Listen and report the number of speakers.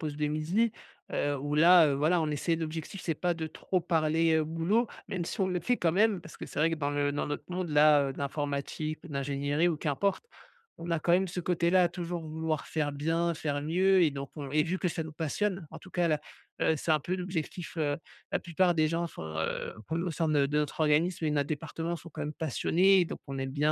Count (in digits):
1